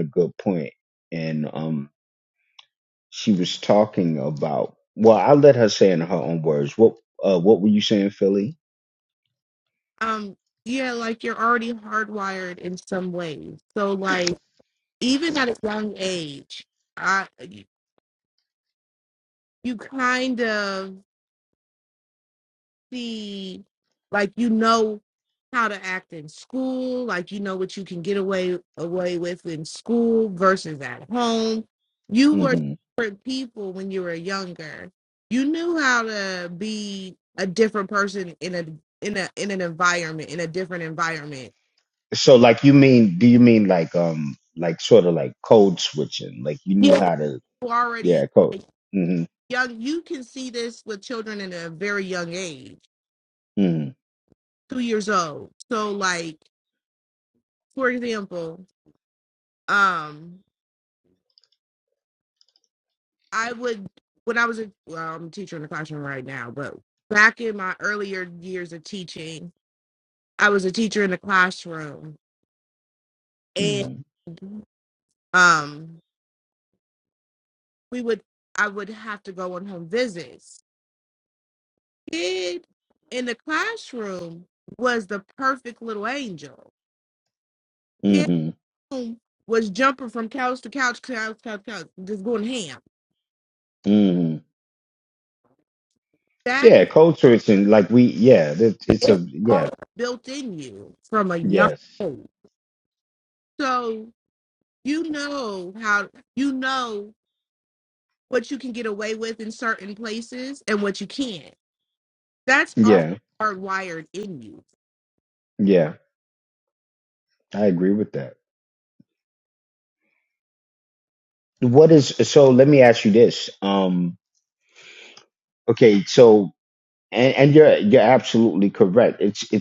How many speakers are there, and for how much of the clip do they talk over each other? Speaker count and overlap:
2, about 2%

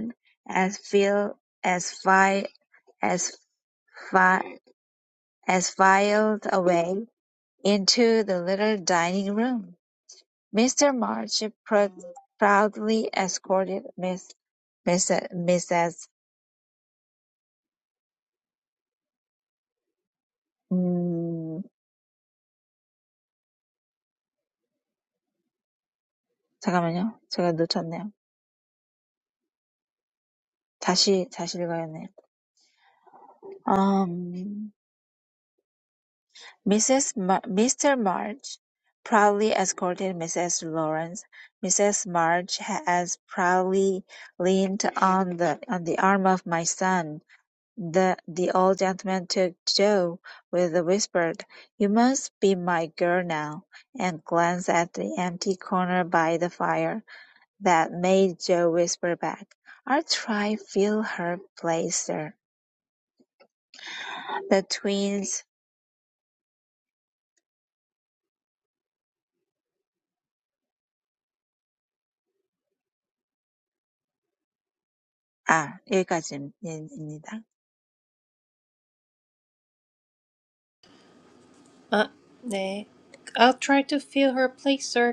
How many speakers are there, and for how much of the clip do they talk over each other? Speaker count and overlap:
2, no overlap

